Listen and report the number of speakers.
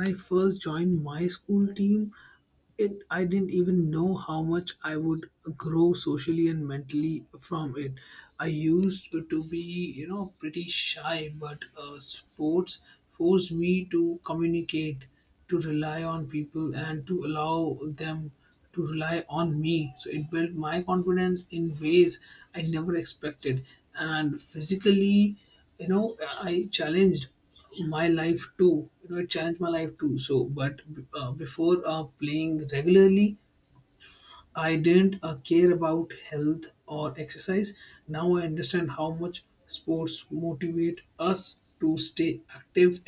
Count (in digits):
1